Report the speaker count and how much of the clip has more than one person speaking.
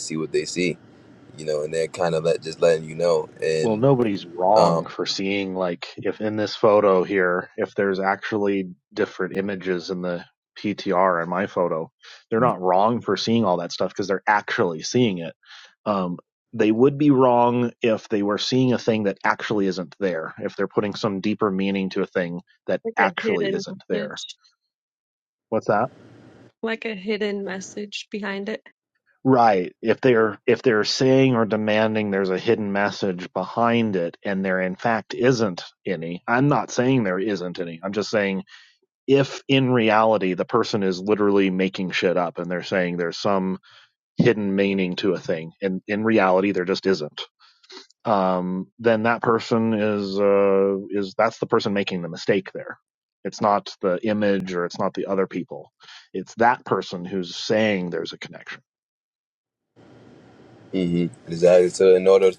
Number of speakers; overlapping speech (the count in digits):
3, about 3%